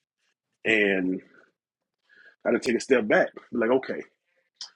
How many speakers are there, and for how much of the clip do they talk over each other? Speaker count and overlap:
1, no overlap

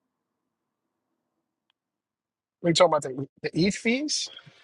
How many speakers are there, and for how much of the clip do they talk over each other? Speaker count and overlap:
1, no overlap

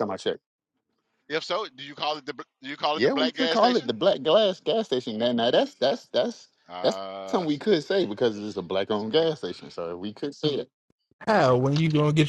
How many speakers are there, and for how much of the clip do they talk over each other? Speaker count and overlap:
3, about 13%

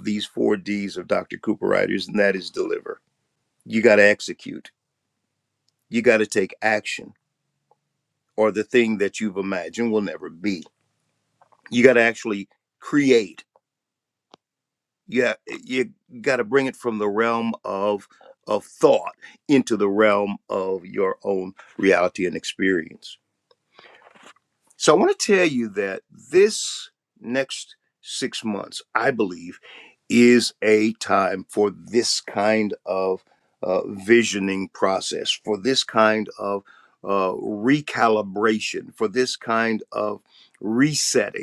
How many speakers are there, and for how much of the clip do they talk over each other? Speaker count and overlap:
1, no overlap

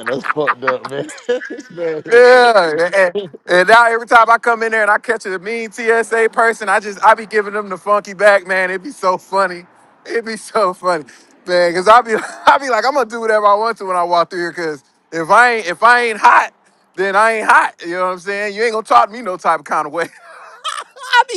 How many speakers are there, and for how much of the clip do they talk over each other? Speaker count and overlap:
2, about 2%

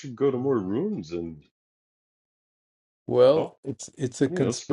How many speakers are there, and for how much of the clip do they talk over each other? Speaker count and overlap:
2, about 13%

